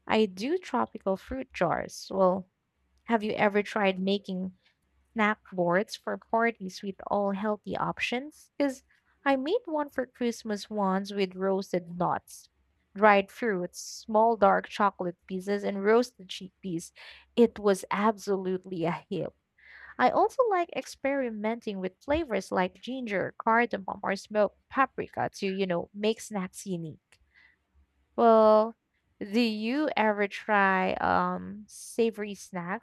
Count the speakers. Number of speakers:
one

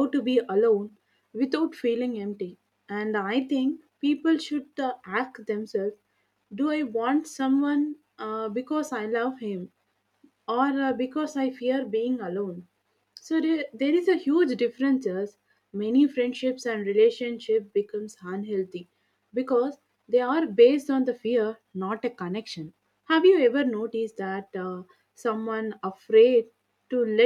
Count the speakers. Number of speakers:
one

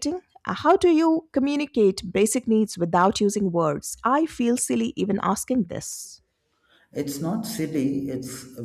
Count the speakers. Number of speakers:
two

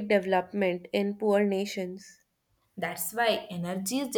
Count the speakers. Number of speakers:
two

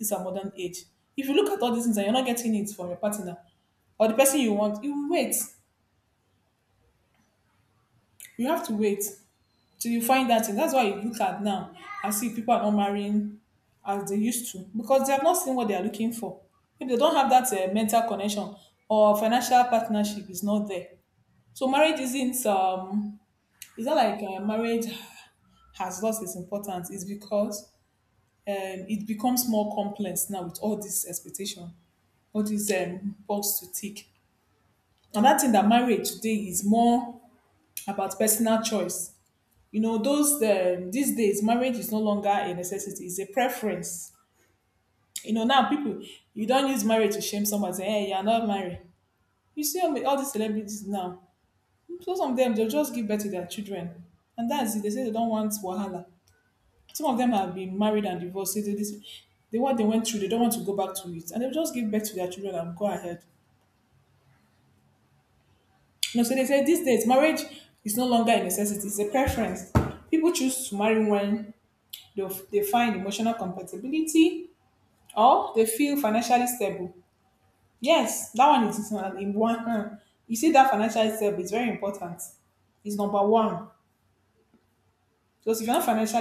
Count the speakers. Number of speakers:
one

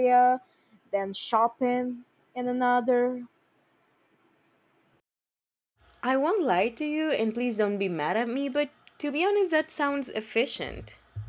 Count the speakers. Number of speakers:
two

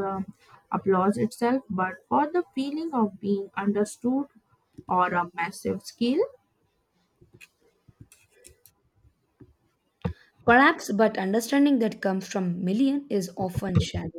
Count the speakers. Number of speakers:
two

